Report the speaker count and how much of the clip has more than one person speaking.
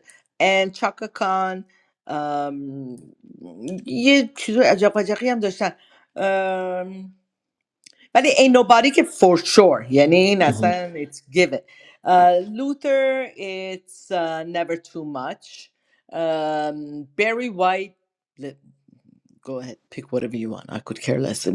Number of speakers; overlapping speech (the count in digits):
1, no overlap